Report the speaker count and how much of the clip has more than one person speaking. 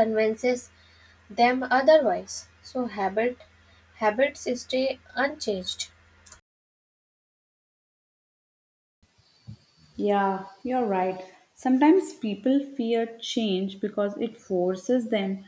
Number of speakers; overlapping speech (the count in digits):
2, no overlap